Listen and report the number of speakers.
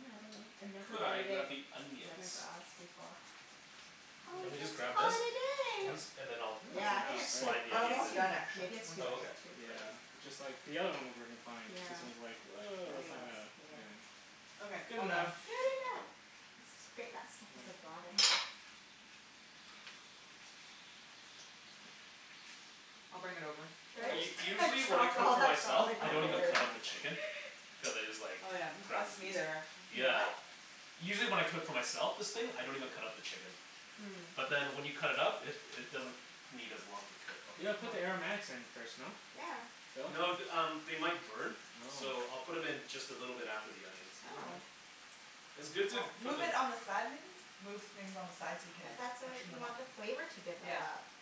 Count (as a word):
four